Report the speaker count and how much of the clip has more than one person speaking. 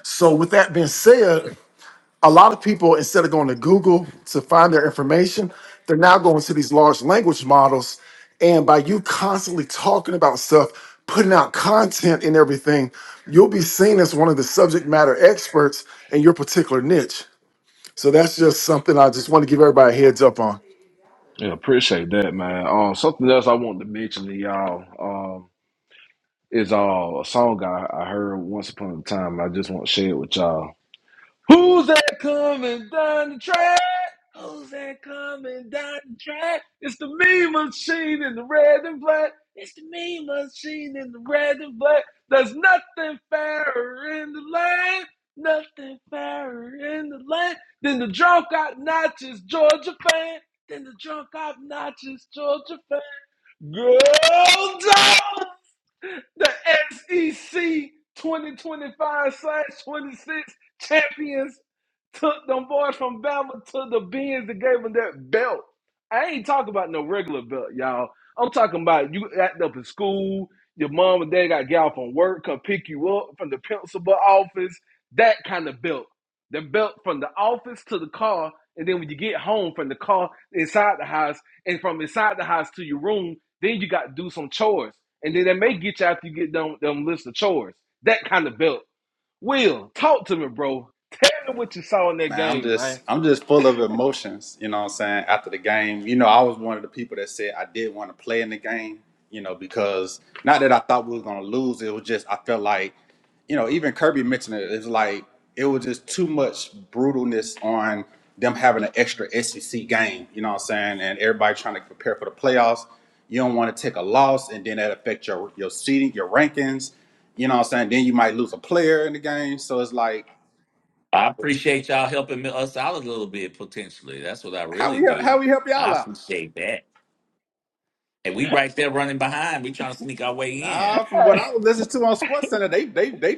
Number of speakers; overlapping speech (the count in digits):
4, about 2%